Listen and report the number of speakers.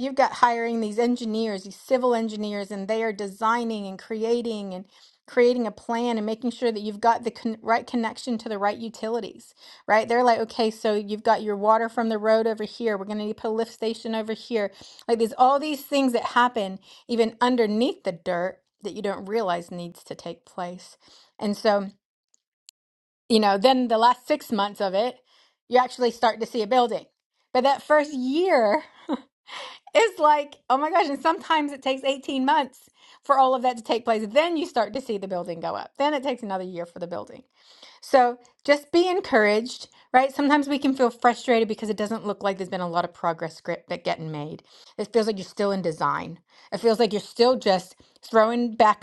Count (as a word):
one